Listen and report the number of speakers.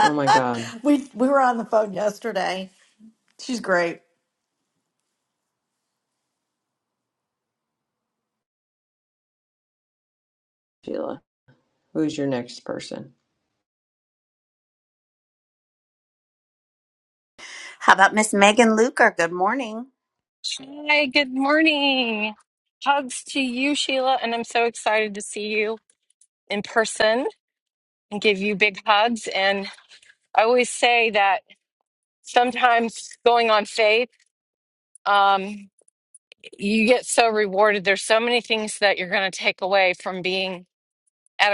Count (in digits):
4